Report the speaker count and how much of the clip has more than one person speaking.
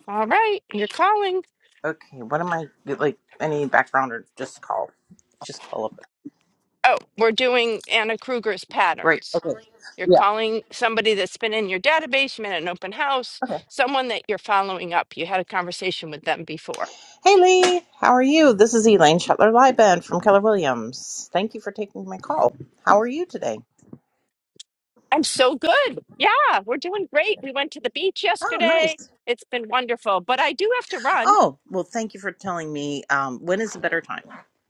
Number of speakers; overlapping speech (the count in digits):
2, about 3%